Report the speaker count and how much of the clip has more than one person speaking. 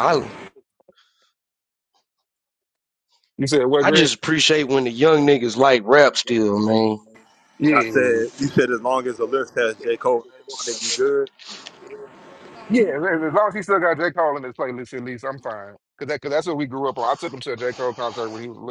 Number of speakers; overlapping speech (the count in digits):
3, about 6%